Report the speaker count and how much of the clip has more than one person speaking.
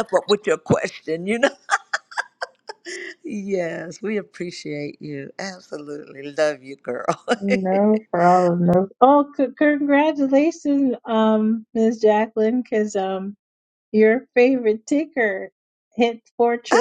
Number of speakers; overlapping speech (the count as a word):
two, about 2%